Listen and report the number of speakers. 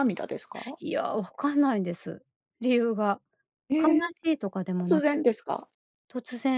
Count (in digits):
2